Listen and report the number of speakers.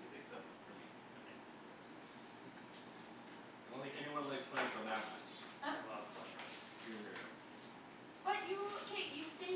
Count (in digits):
3